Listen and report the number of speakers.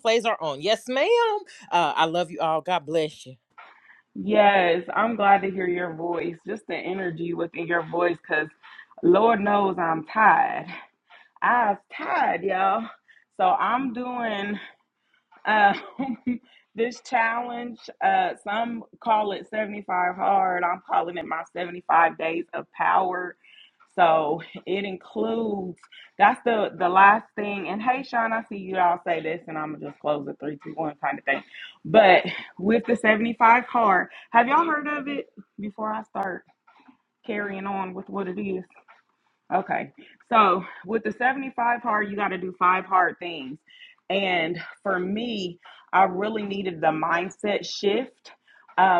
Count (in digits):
2